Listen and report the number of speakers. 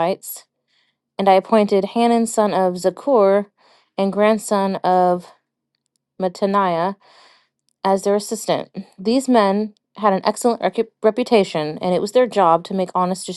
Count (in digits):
1